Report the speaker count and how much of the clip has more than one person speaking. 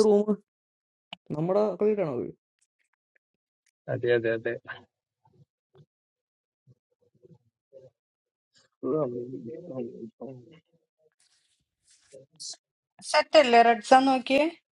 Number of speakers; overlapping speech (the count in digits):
3, no overlap